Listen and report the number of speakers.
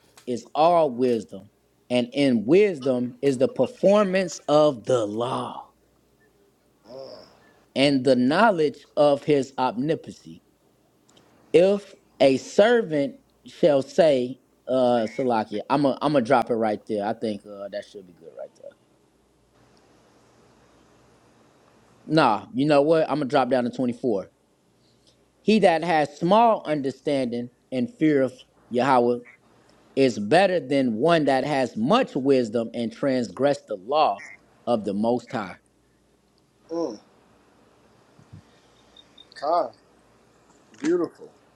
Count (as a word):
two